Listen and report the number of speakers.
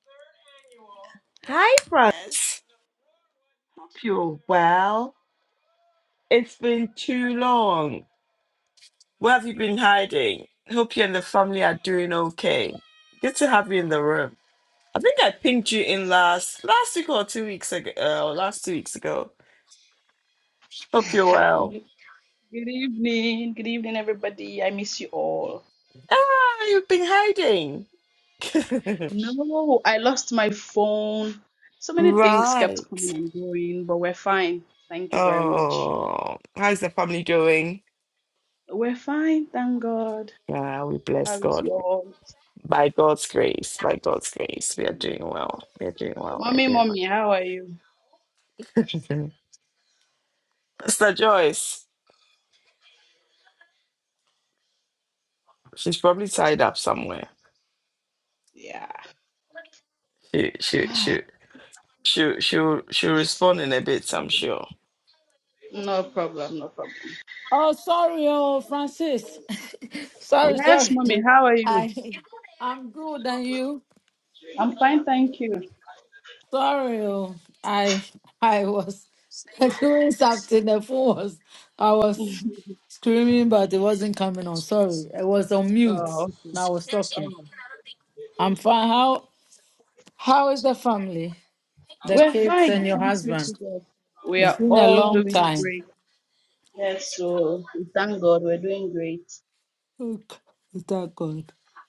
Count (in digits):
3